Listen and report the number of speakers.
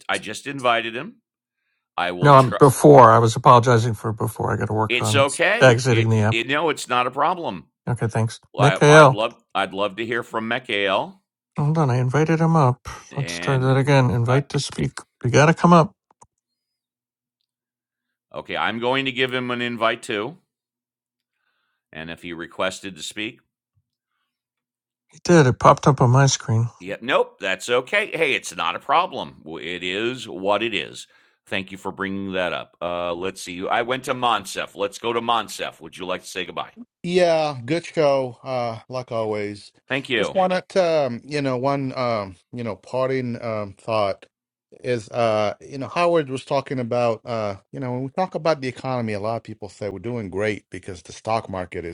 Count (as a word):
three